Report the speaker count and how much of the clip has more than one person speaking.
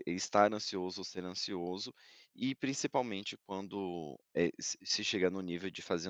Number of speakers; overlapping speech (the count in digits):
1, no overlap